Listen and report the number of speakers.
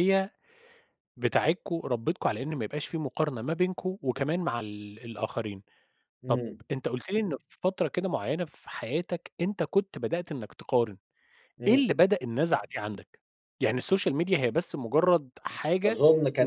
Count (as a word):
two